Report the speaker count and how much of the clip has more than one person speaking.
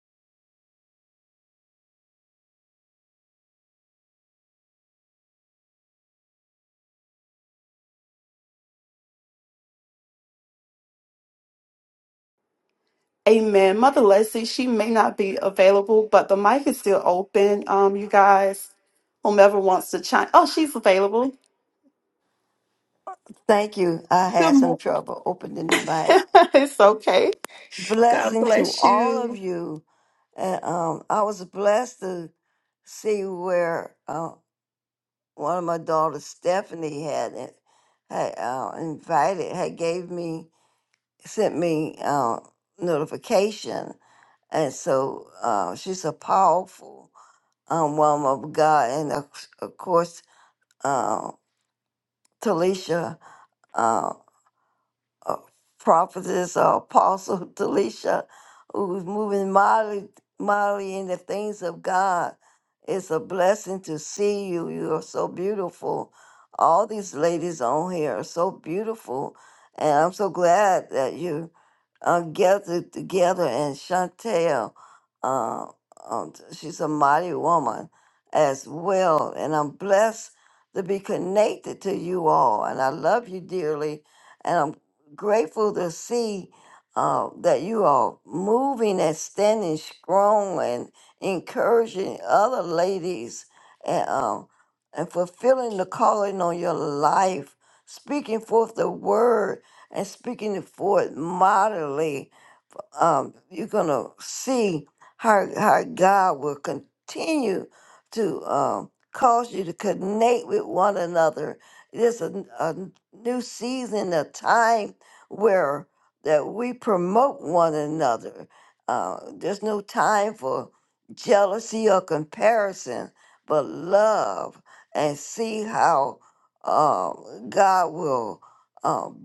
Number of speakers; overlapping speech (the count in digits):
2, about 1%